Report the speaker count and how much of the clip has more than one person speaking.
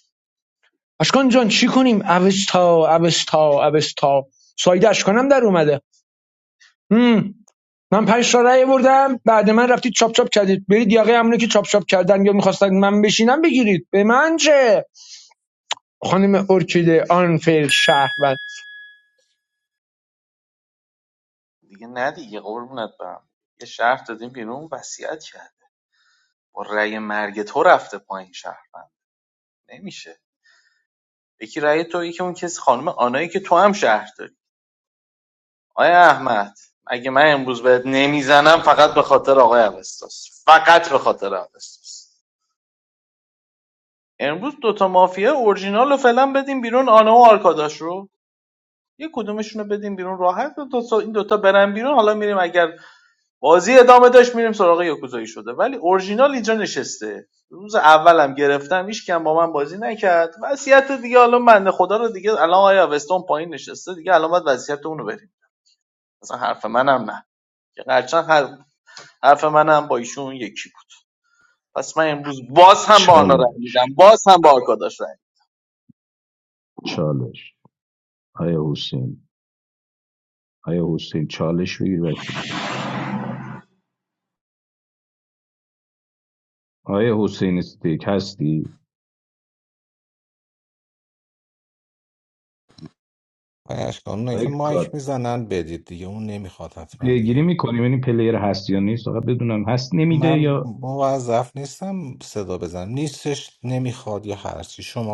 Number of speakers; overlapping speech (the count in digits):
4, about 2%